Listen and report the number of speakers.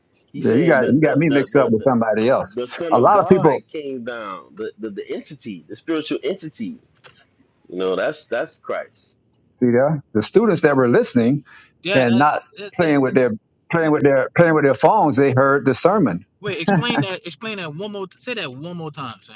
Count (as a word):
three